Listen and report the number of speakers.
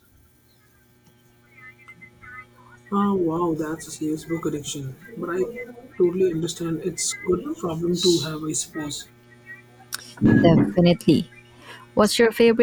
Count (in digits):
2